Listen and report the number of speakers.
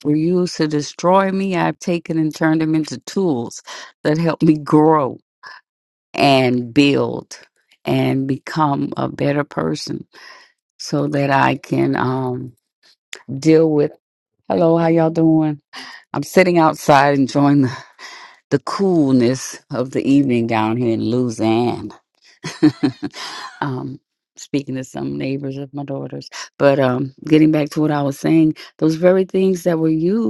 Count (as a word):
one